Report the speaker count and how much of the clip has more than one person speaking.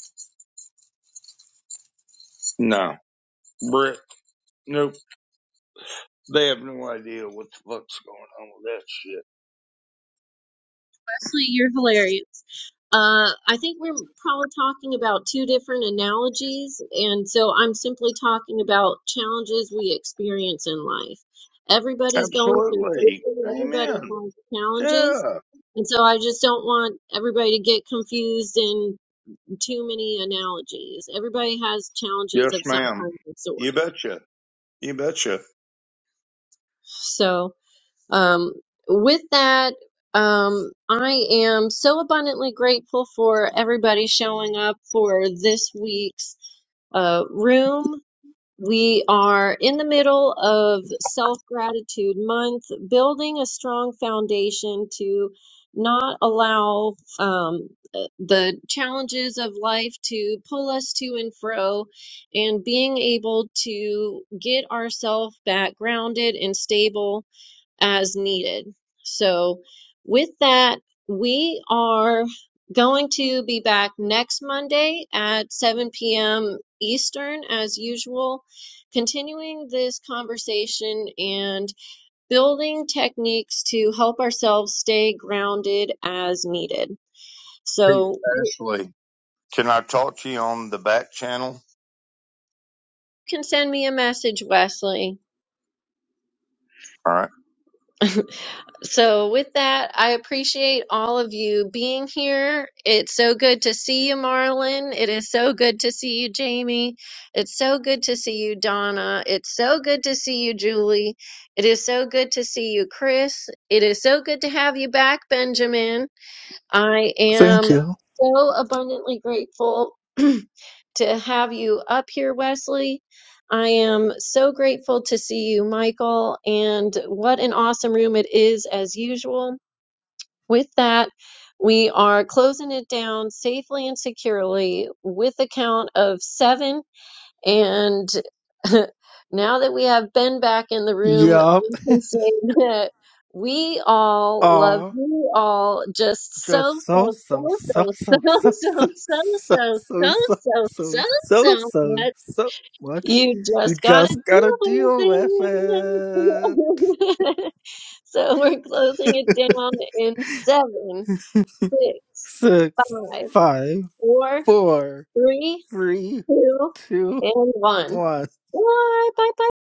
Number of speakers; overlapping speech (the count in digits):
3, about 7%